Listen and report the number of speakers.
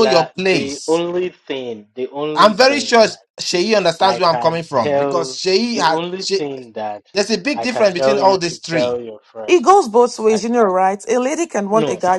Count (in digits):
3